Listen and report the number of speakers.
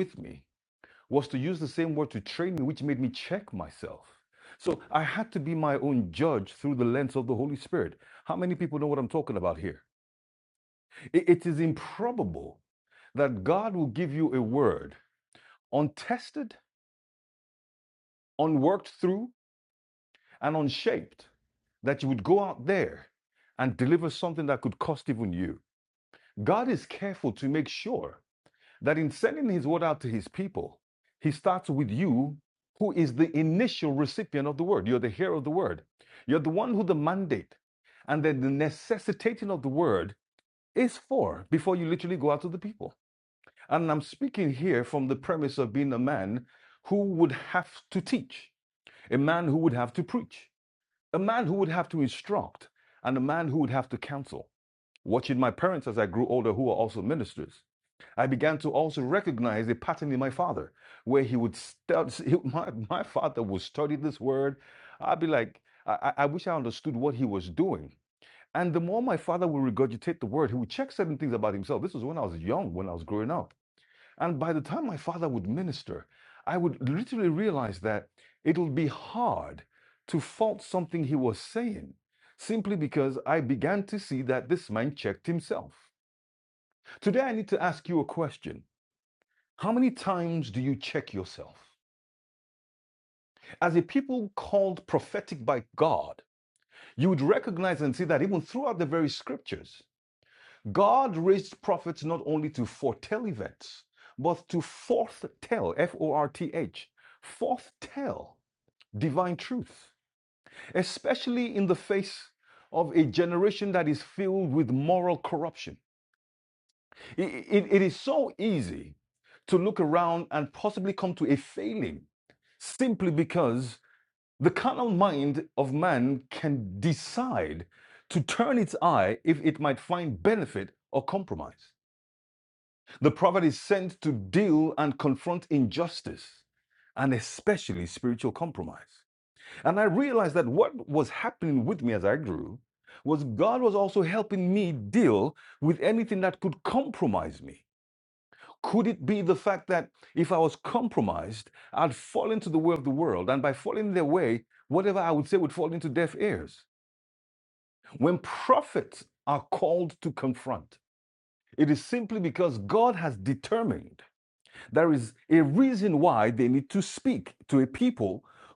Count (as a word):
one